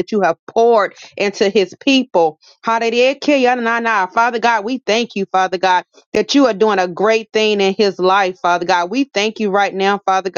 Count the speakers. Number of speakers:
one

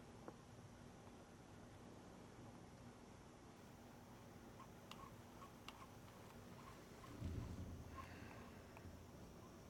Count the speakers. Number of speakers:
zero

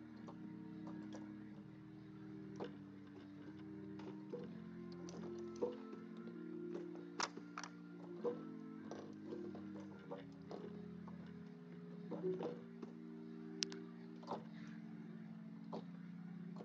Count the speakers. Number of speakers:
zero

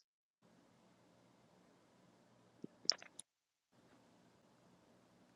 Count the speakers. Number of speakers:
zero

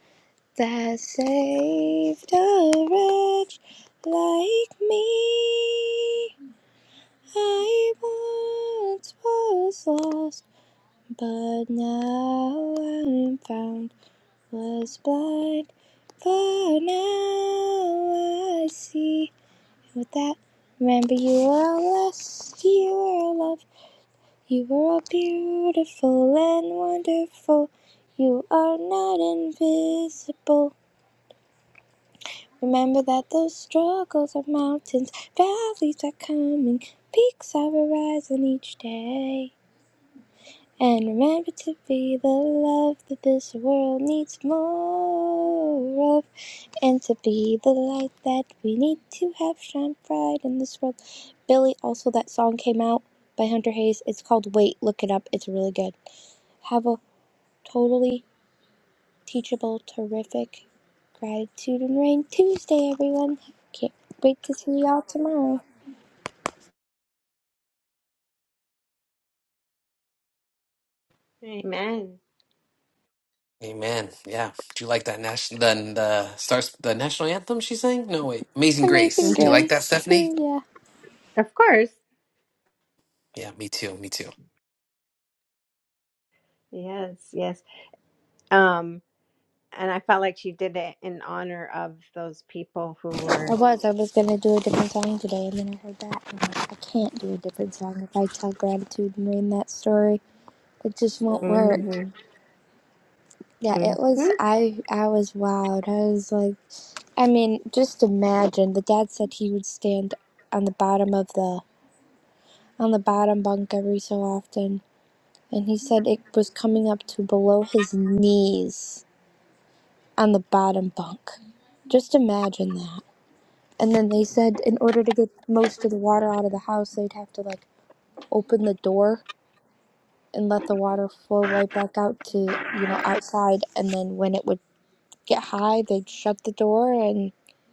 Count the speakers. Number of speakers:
three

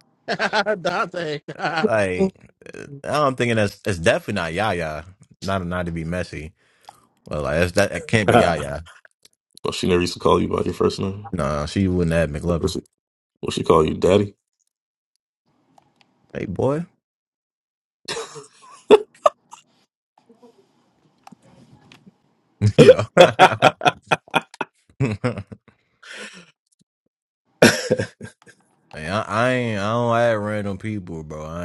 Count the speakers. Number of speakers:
three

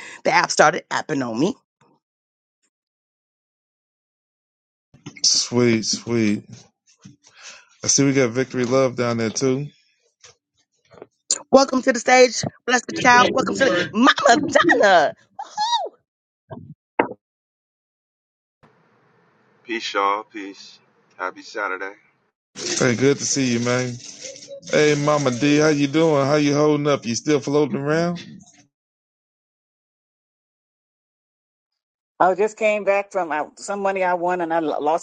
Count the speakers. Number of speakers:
four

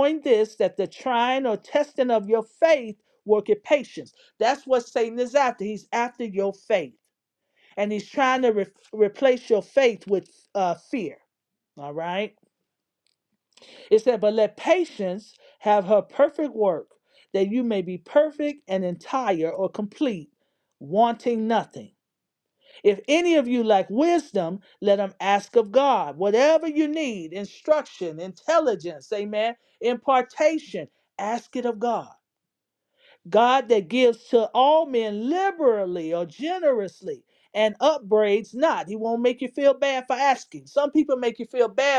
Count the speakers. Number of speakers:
one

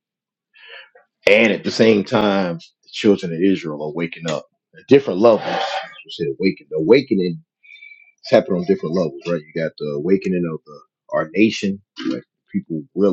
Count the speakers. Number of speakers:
one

